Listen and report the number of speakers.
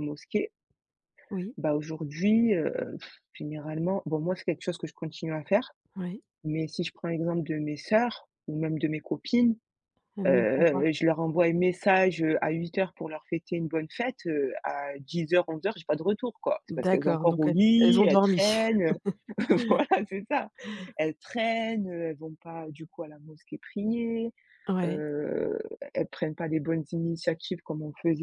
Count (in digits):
2